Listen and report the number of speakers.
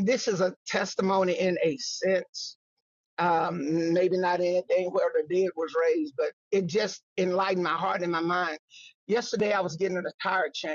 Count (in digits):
1